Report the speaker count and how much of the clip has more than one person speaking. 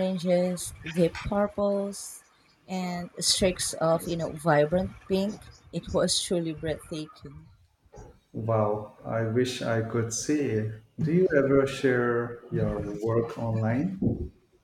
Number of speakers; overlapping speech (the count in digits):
2, no overlap